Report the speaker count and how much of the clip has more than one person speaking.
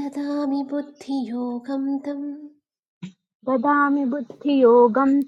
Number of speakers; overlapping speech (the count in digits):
2, no overlap